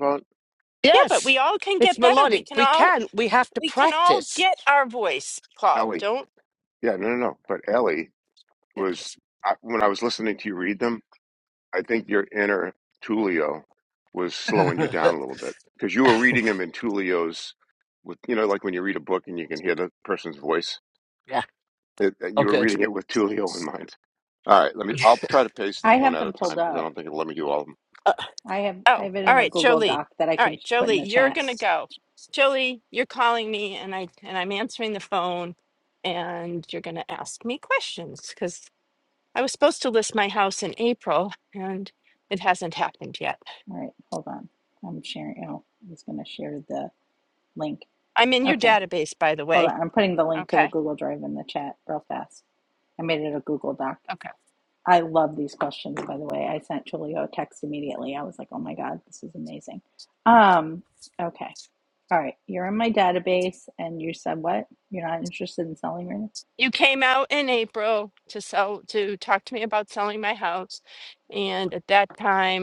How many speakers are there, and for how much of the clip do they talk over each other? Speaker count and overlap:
4, about 10%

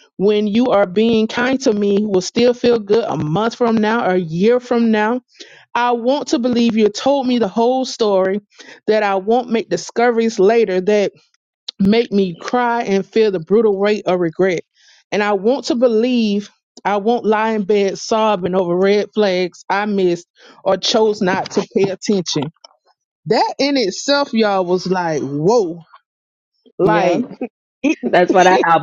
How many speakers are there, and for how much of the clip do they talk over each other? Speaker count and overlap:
2, about 1%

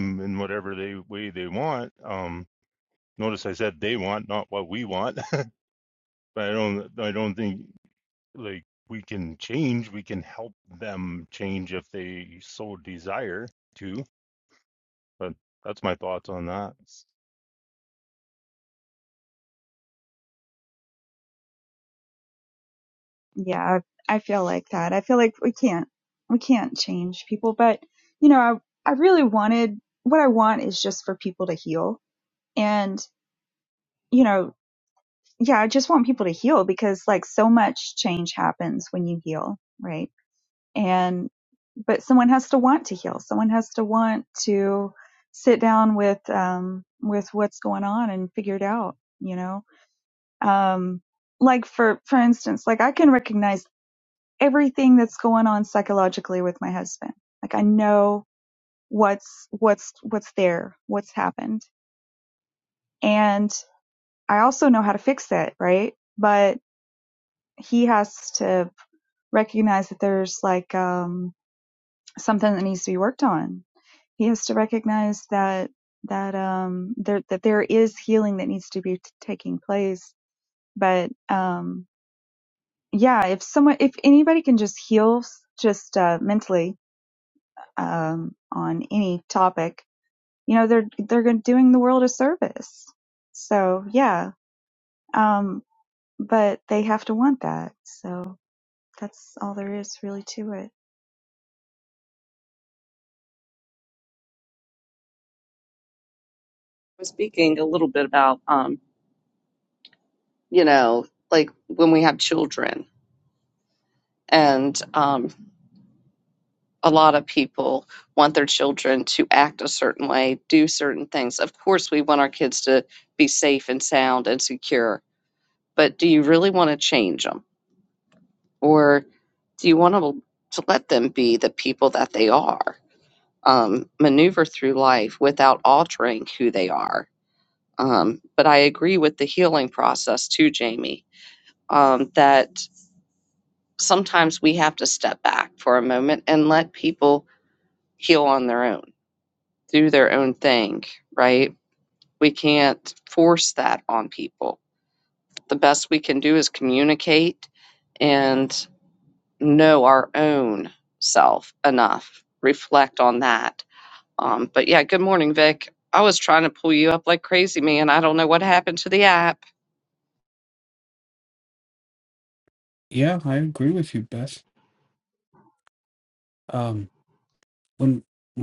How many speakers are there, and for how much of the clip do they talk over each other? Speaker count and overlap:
4, no overlap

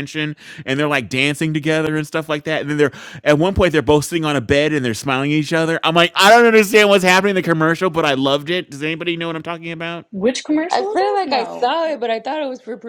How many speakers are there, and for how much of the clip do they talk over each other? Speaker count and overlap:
3, about 8%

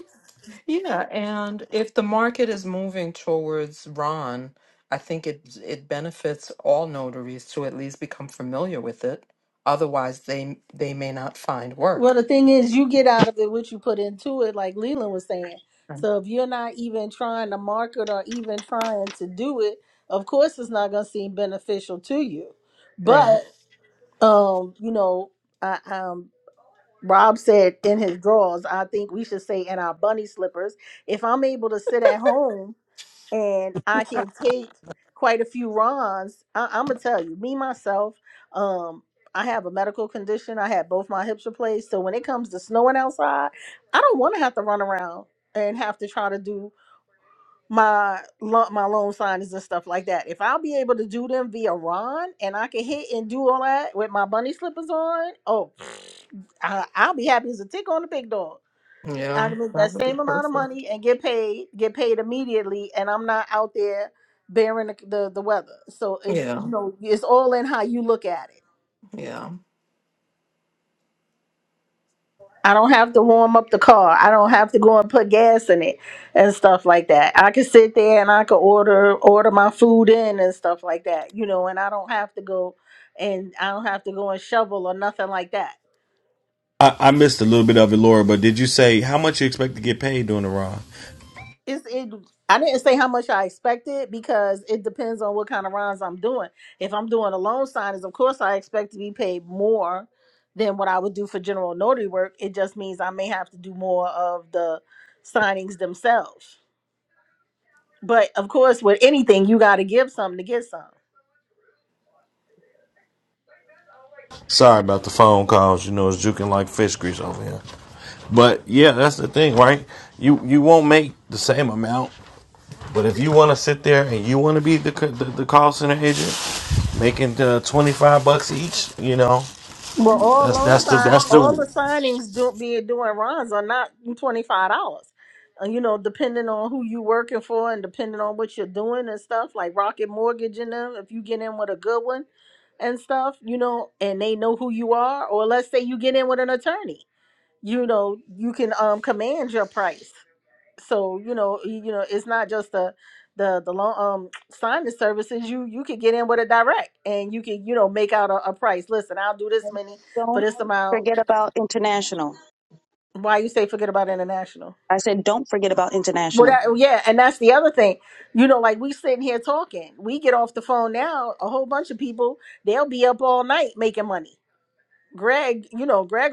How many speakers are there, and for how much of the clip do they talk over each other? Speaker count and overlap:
4, about 2%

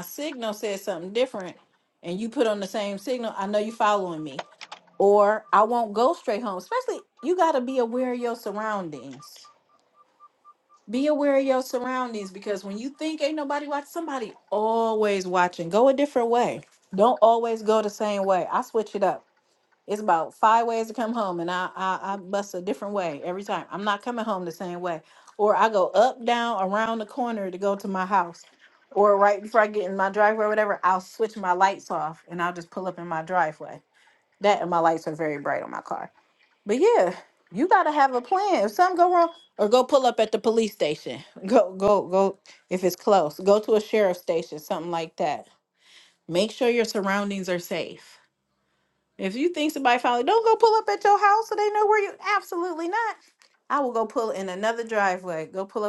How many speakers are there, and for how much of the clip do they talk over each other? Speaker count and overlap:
1, no overlap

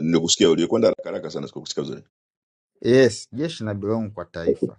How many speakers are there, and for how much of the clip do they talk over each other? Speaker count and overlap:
2, no overlap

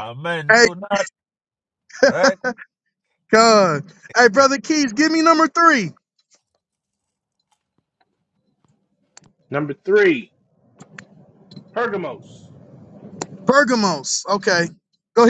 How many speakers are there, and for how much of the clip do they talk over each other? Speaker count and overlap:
3, about 1%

